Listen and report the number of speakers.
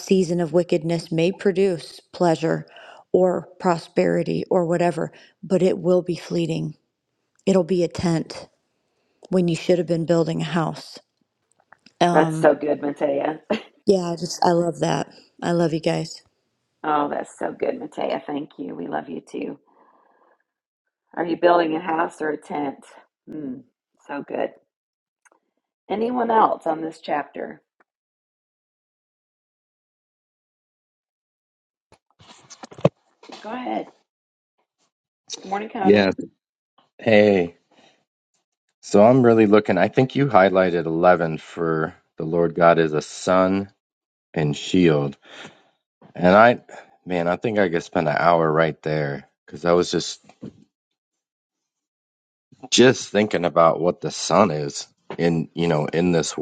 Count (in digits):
3